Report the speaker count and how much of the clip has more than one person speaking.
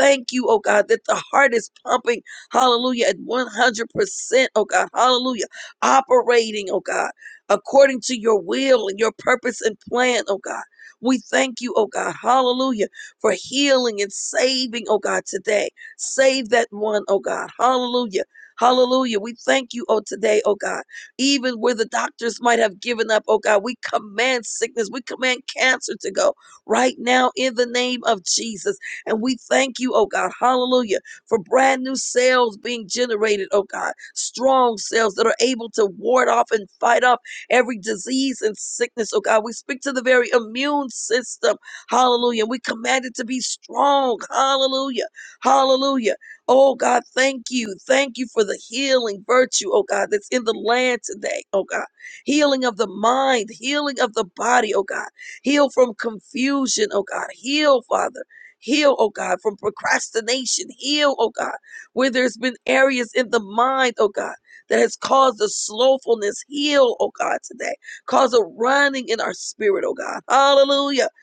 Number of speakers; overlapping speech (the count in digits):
1, no overlap